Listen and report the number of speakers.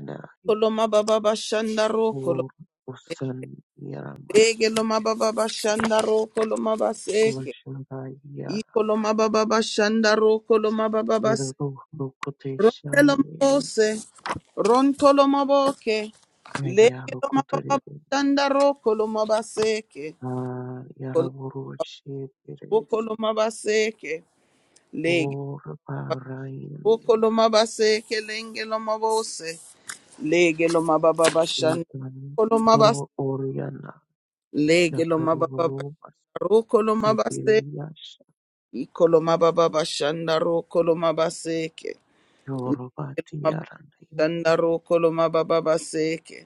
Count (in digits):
2